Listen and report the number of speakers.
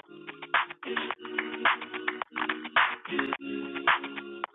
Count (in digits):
0